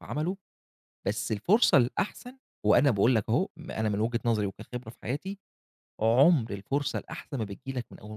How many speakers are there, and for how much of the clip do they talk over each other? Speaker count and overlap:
1, no overlap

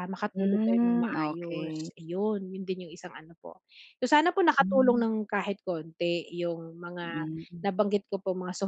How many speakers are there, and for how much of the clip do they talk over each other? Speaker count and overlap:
2, about 24%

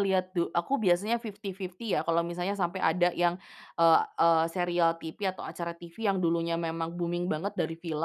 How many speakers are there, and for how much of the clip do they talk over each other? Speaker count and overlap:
1, no overlap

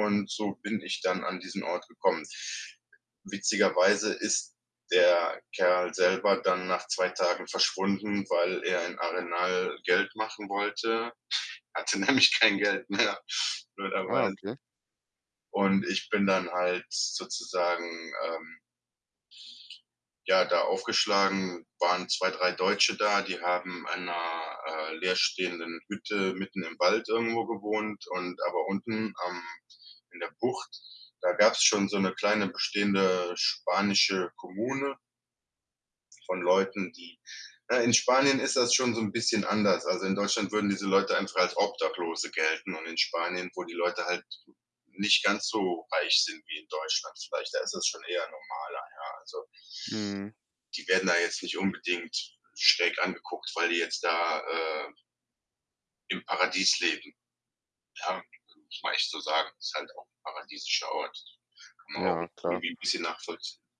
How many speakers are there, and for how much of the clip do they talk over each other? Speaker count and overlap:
2, about 2%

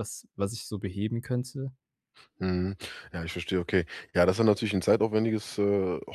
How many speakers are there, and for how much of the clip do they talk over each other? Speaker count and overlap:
2, no overlap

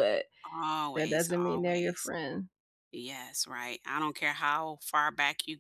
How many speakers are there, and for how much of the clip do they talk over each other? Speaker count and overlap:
2, about 17%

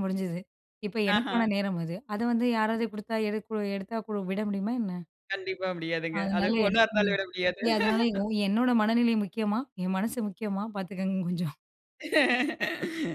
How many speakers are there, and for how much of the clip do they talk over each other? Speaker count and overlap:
2, about 8%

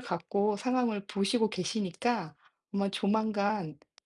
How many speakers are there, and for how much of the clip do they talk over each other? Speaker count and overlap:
1, no overlap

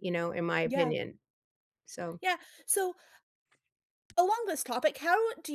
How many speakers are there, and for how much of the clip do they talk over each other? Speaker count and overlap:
2, about 5%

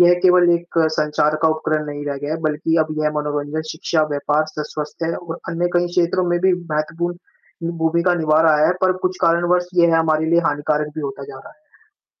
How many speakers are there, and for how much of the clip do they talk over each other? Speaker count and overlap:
1, no overlap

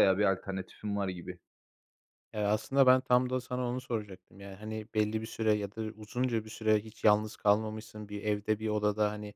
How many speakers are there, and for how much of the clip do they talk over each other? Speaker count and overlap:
2, no overlap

